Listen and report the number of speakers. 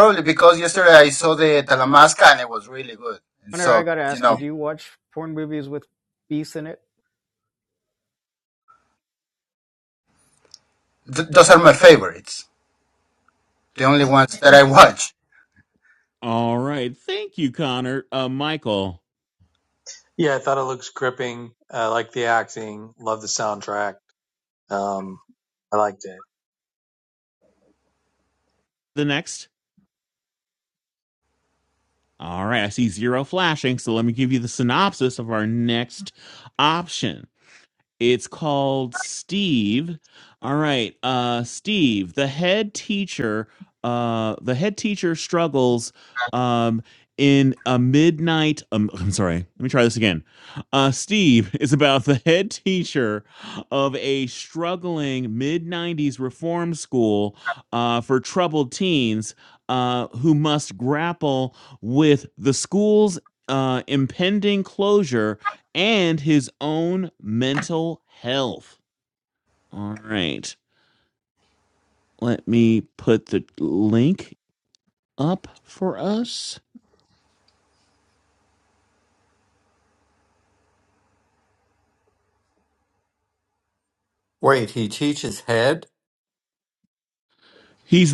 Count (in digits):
5